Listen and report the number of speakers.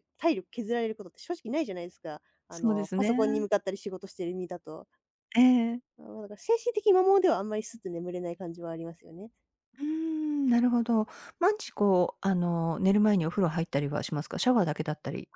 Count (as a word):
two